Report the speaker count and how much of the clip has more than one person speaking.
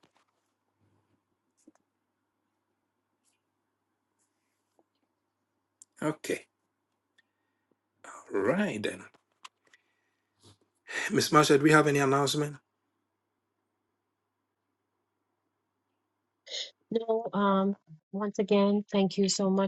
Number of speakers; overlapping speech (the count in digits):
2, no overlap